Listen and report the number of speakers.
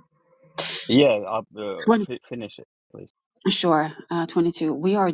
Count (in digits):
2